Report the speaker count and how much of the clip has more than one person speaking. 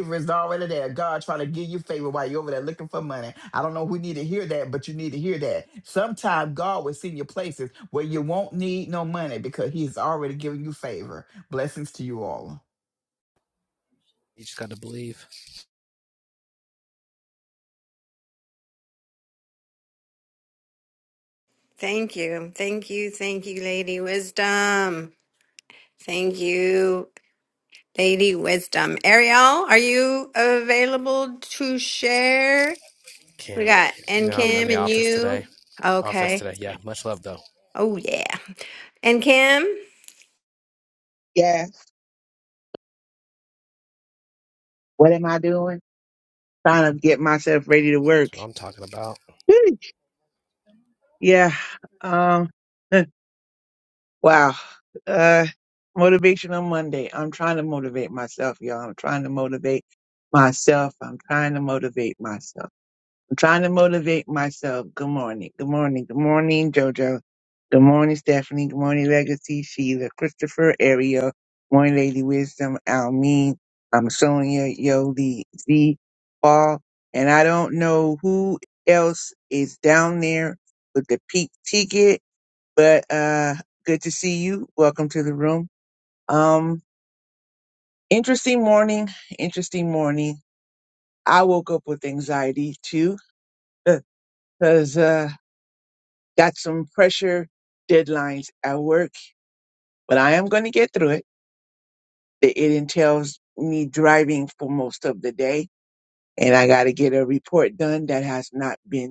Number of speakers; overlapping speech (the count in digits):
4, about 2%